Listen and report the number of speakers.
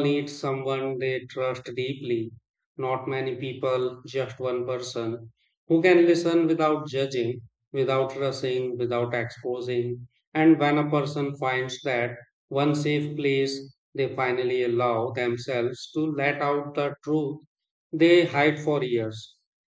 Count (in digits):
1